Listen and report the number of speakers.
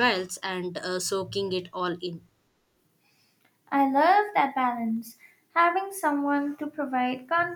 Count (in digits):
2